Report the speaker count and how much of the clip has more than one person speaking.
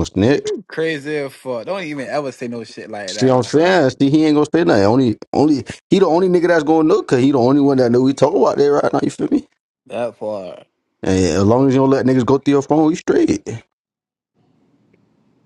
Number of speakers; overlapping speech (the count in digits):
2, about 4%